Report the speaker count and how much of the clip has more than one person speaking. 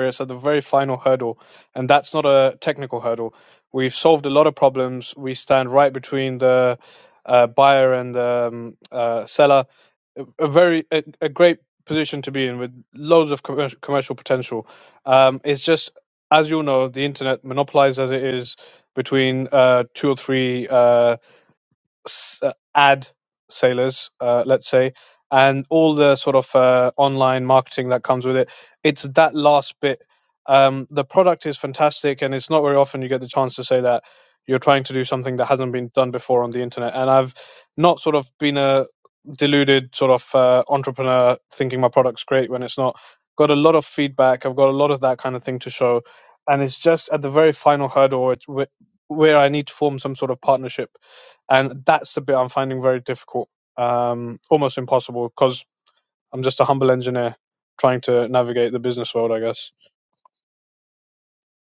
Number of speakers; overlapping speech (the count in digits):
1, no overlap